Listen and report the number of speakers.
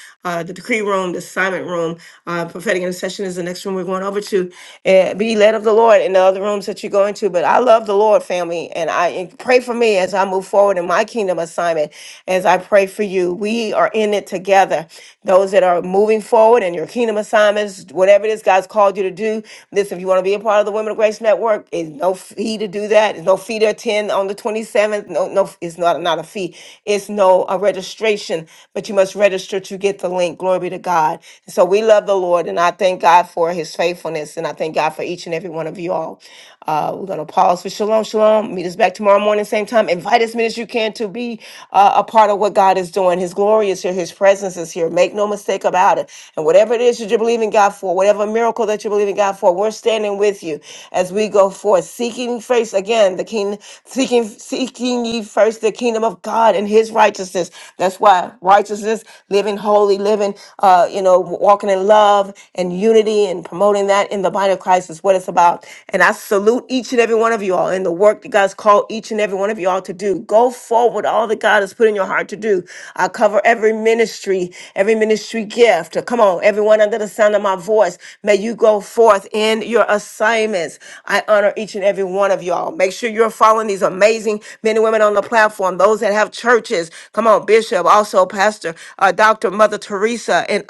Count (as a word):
one